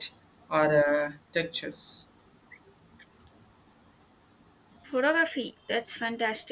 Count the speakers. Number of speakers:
2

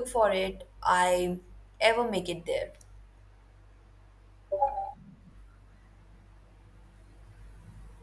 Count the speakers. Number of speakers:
1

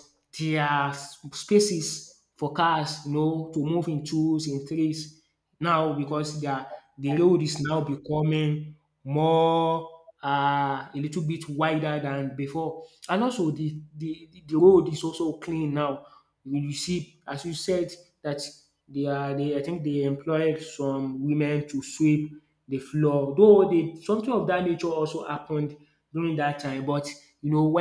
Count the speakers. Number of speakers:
1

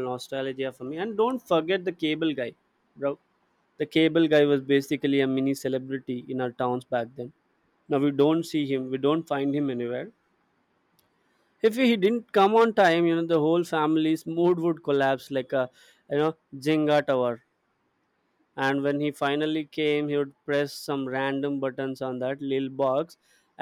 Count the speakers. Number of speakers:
1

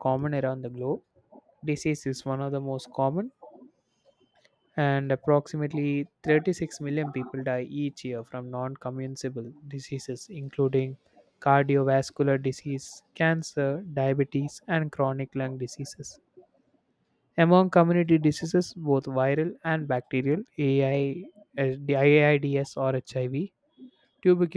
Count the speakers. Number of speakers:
1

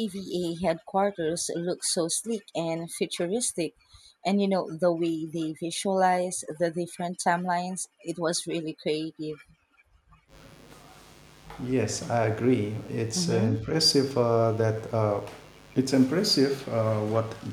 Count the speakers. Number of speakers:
2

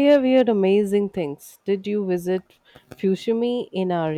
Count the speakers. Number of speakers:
1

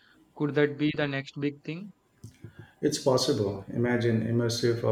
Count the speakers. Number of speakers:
2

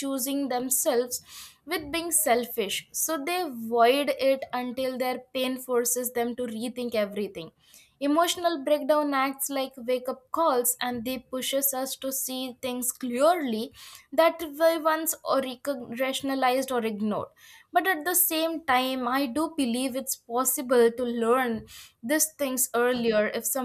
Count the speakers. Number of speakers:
1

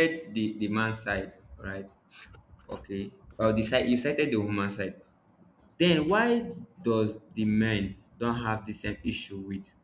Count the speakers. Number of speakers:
1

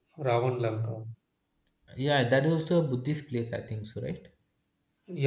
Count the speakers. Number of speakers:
2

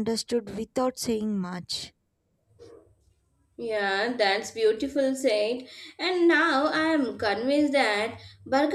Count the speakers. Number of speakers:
2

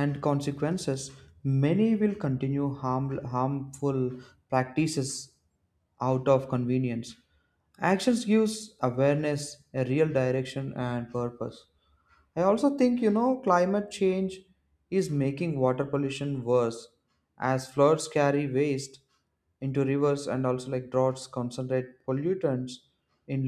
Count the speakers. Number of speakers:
1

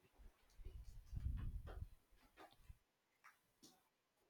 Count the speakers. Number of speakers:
0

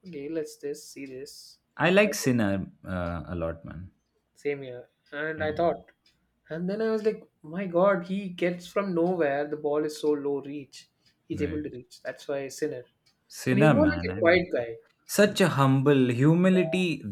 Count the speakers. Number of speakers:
2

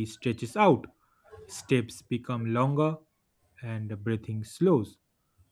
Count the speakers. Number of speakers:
1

